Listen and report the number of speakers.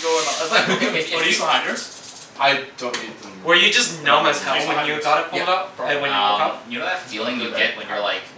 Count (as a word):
four